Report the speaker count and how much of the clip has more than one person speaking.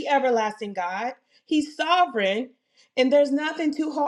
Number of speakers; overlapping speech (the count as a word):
one, no overlap